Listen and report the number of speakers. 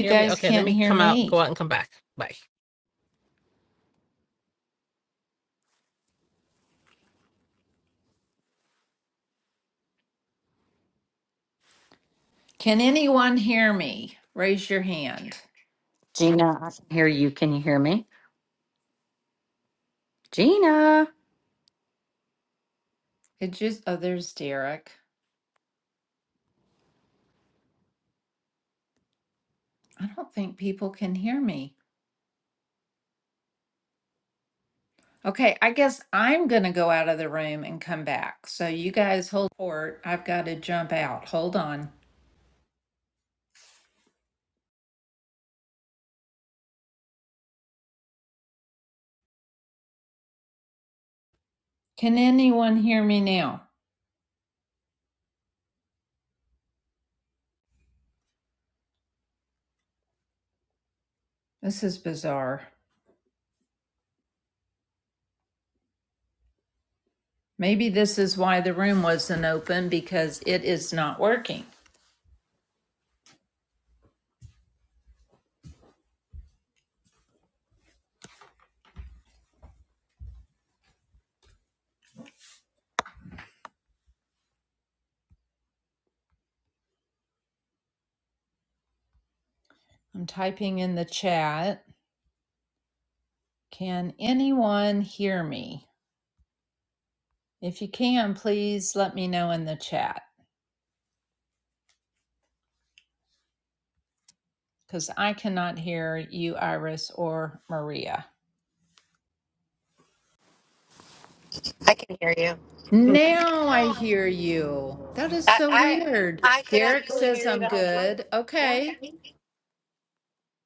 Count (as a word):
four